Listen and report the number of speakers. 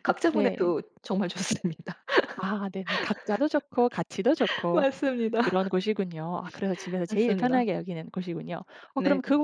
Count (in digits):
2